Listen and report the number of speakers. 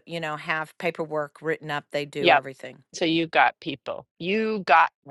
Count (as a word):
two